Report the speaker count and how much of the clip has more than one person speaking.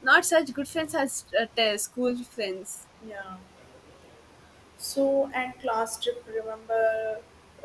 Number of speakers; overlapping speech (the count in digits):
2, no overlap